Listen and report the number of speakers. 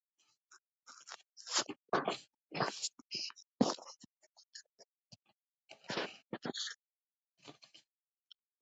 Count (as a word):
zero